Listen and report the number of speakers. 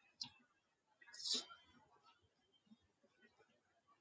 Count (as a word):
zero